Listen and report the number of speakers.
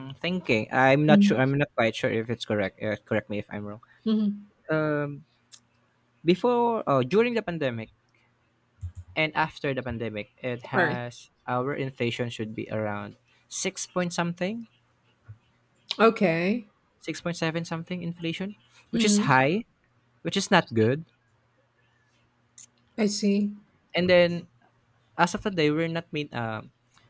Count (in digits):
2